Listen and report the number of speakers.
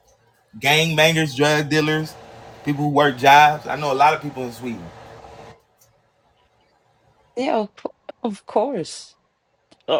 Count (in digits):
2